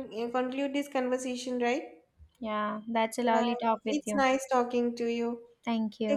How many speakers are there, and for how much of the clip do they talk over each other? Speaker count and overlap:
two, about 17%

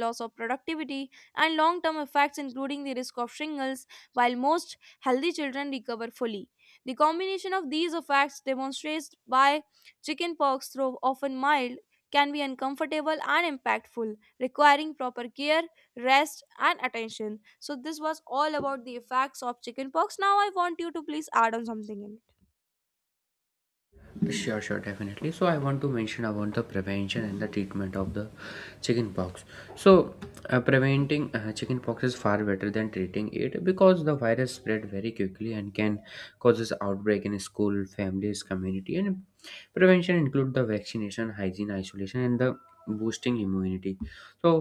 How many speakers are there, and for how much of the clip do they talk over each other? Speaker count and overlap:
two, no overlap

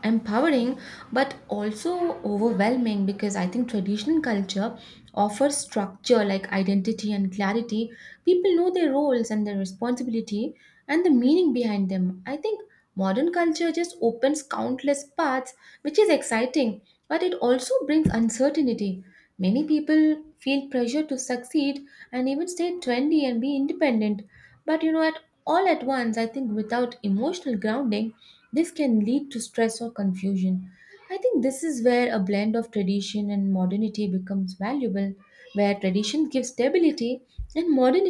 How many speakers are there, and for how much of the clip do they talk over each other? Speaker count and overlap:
one, no overlap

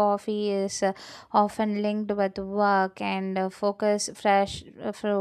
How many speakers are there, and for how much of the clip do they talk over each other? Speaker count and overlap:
one, no overlap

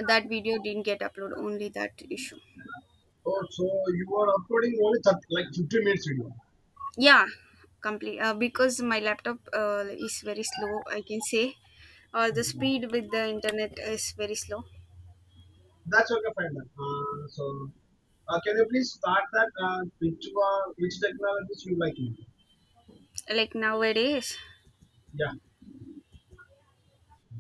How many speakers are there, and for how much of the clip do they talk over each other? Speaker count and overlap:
two, no overlap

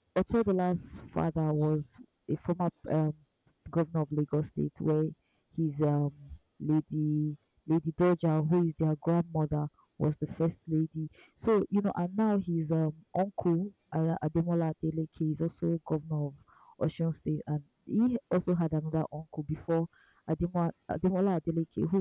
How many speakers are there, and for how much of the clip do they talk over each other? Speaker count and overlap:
one, no overlap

